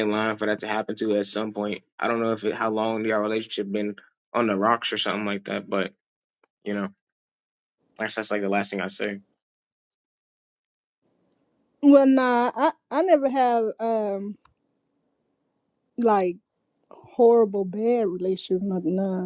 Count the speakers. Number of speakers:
2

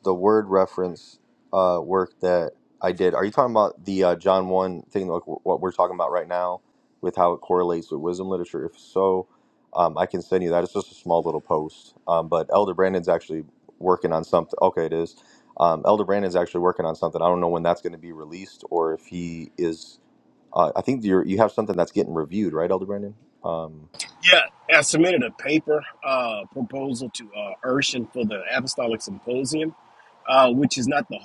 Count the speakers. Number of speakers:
2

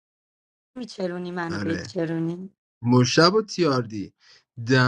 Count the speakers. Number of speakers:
2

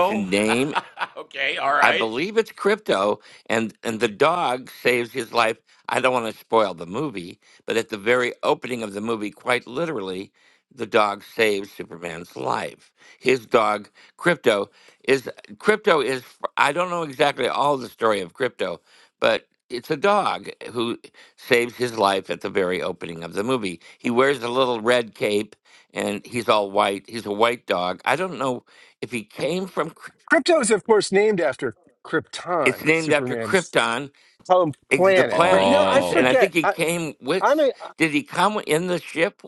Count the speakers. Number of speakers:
3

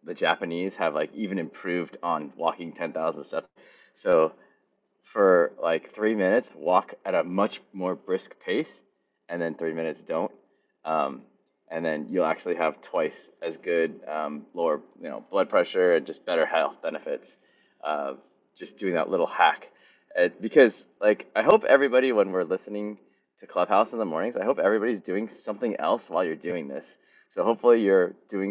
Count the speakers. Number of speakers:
1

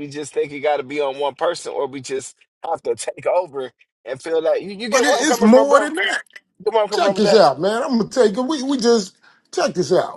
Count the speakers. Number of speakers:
2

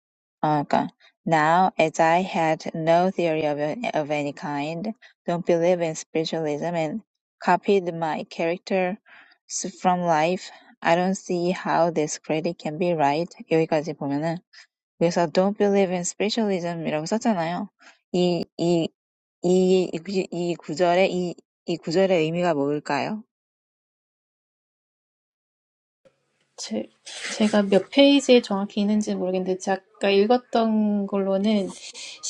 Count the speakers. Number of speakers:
2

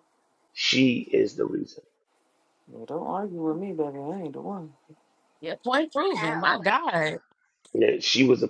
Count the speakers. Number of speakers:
3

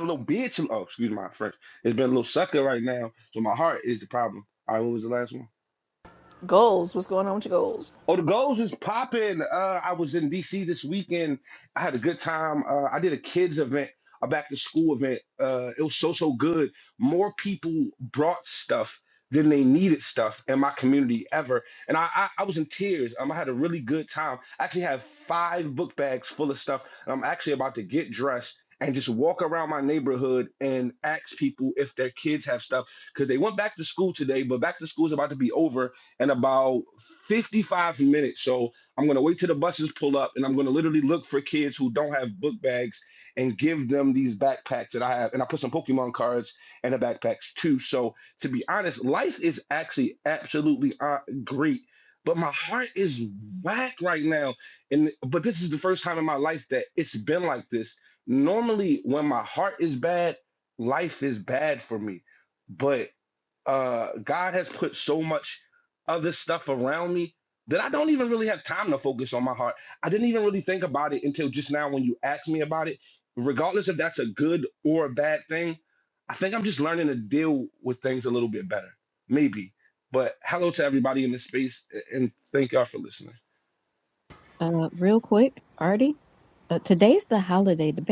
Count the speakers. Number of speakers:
3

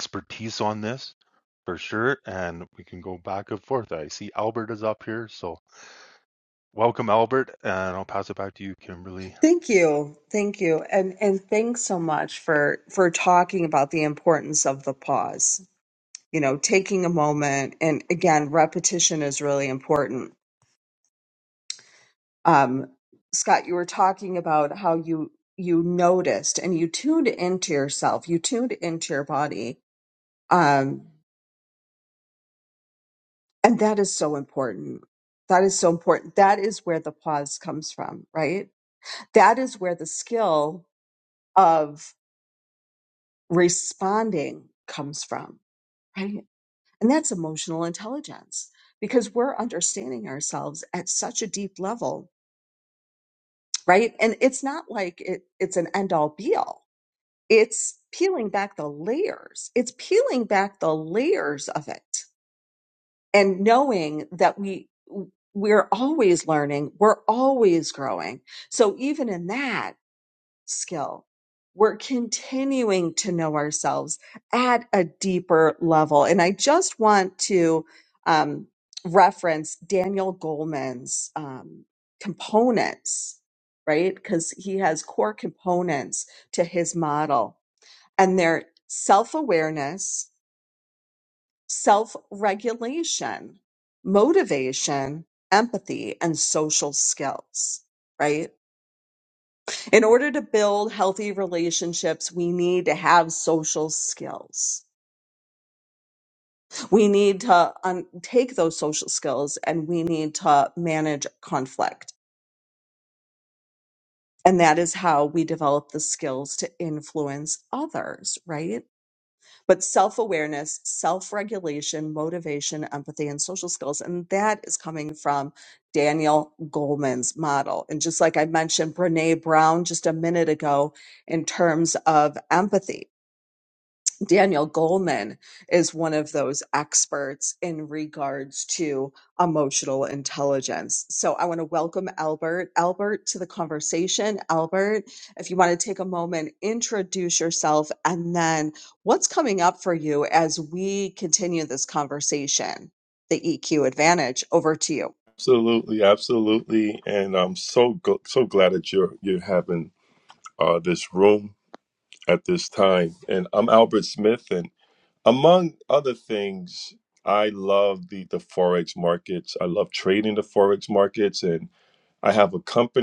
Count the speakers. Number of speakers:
3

